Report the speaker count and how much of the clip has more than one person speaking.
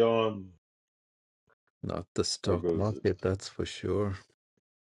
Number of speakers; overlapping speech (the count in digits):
2, about 11%